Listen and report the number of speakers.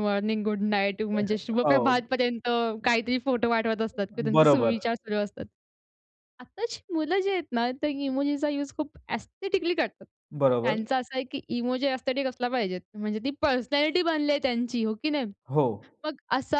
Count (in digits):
2